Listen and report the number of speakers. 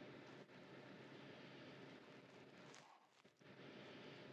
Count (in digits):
0